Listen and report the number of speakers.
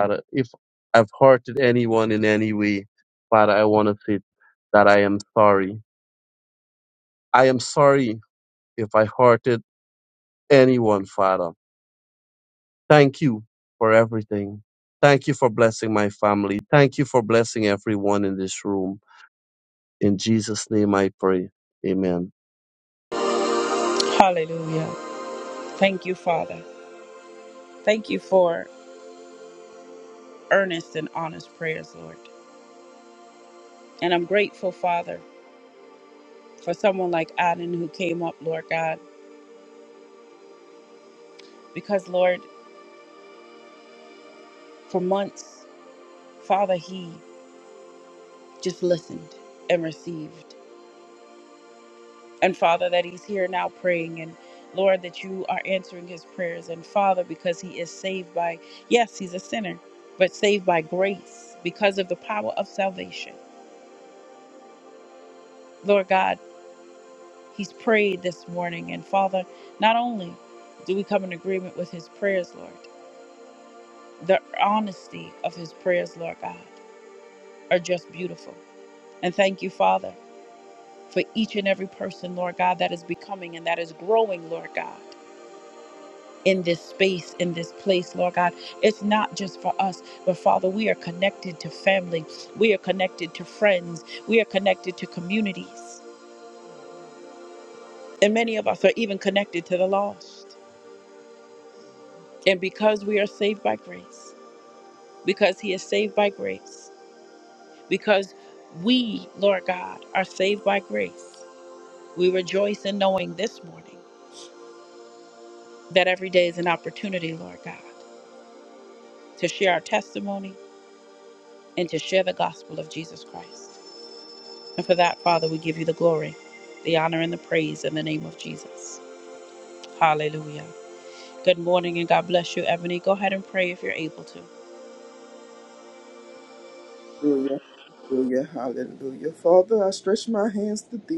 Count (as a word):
three